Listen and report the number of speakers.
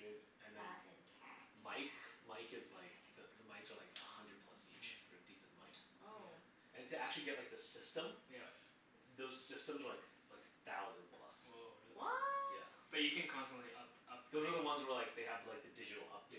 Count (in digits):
3